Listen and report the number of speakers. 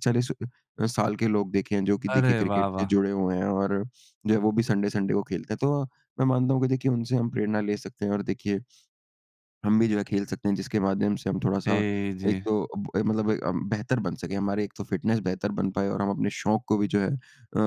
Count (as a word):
two